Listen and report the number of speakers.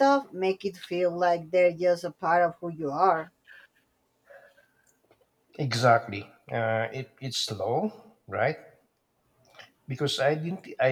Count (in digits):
2